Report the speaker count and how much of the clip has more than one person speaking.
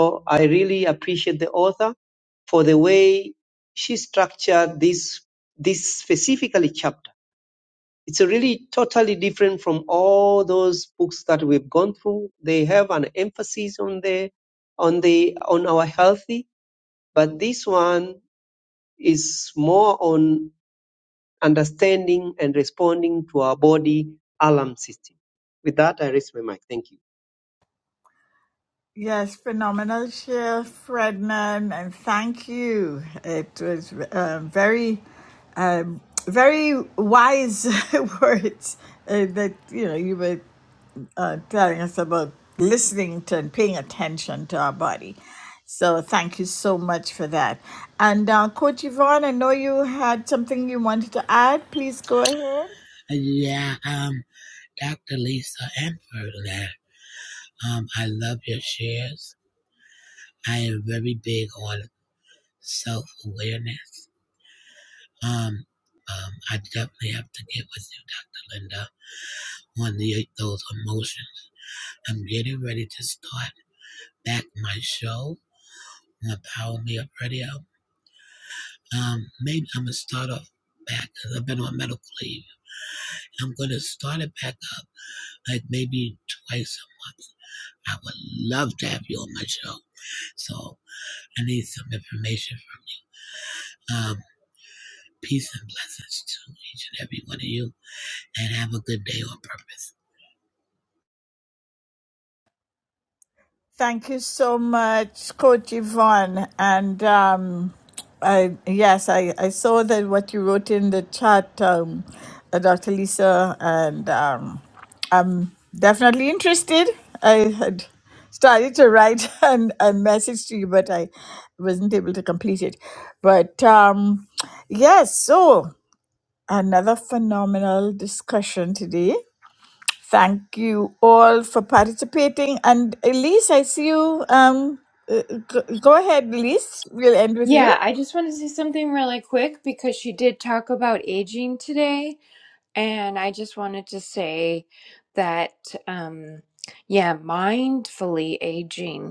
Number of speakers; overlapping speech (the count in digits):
4, under 1%